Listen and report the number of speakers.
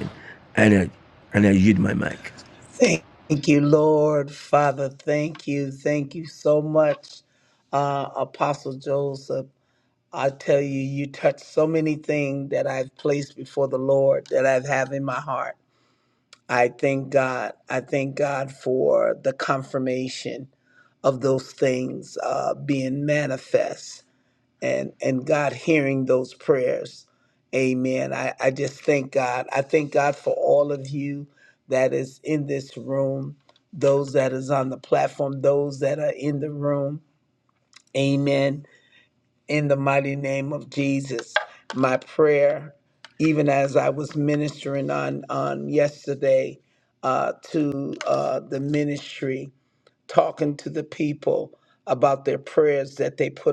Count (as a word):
two